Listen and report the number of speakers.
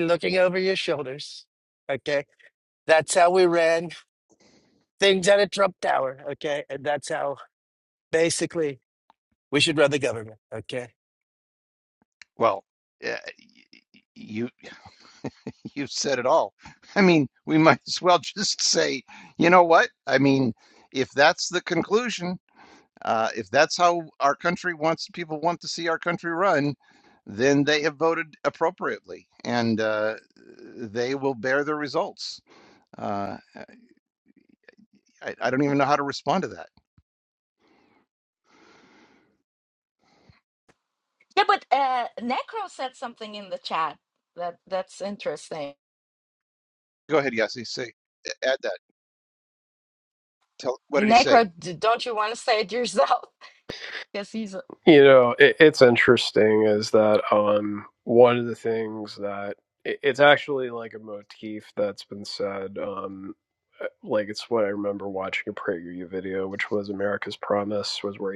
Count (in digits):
4